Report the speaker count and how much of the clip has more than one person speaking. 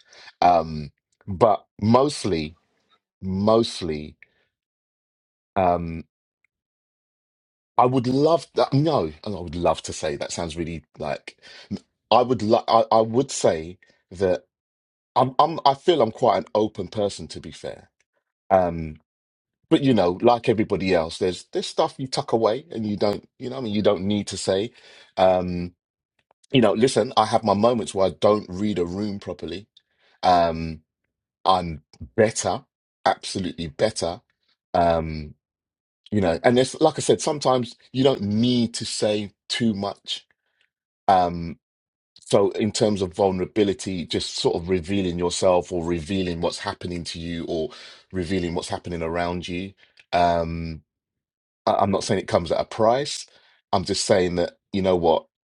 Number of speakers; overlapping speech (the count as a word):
one, no overlap